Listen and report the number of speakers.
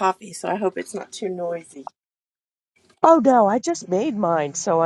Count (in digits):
2